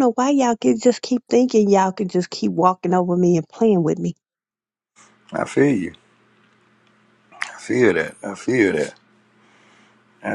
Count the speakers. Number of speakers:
2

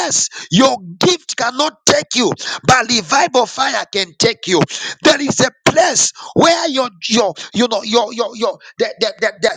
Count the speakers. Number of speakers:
1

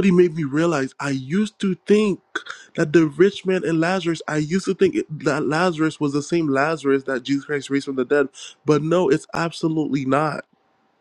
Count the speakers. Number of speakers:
1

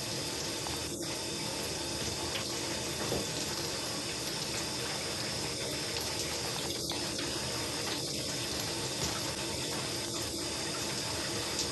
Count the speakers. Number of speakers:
0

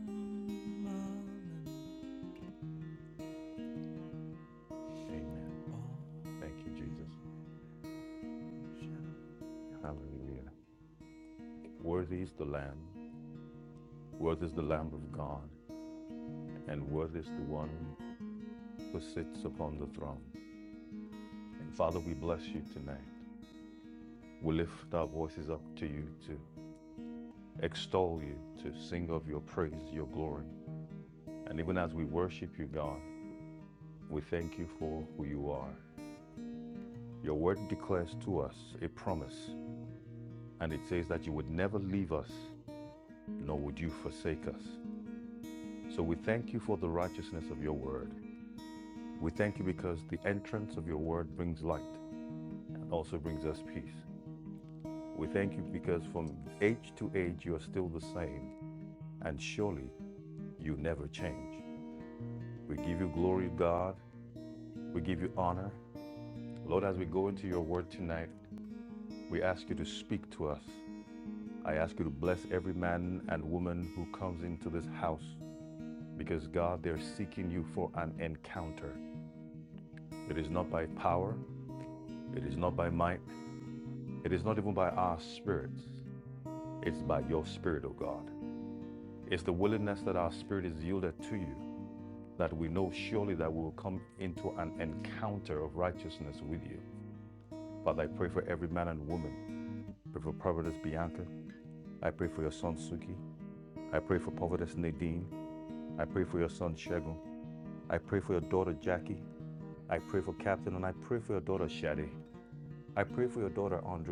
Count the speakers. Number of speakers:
2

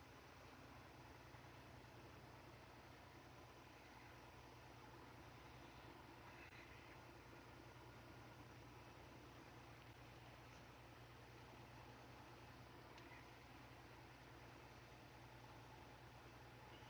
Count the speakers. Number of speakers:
0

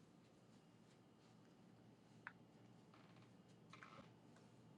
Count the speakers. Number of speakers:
0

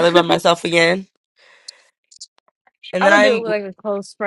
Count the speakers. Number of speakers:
2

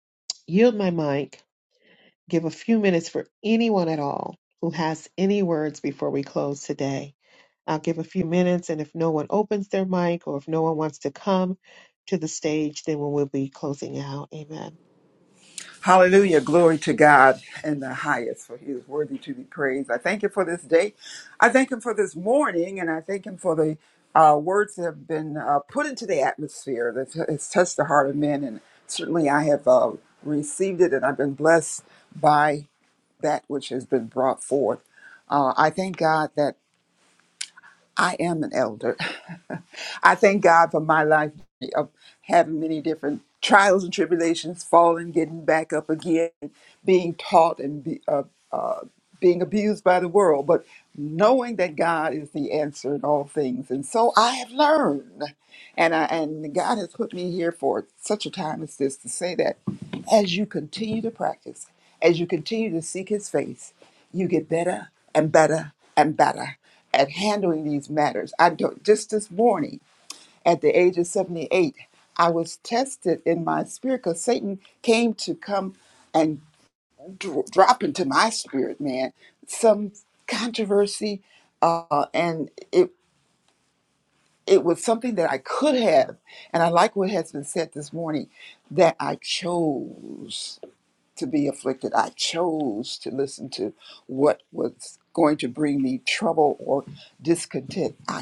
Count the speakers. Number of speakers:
2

